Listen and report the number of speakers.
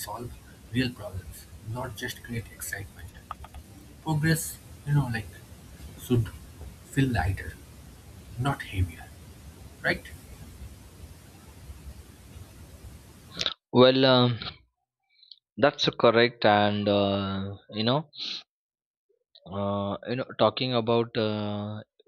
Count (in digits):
2